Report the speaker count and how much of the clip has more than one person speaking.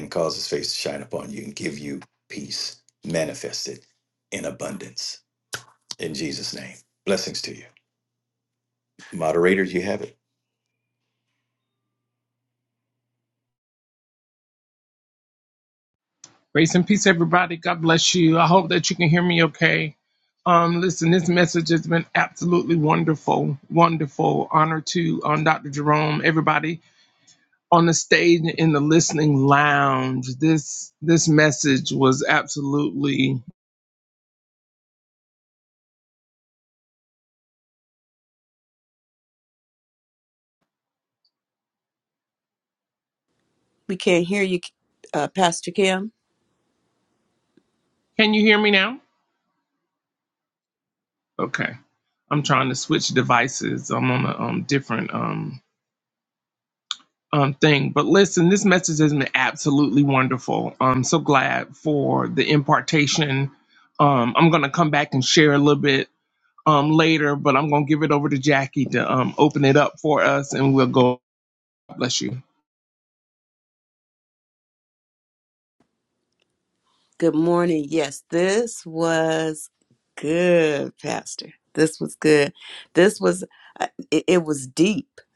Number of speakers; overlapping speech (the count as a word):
three, no overlap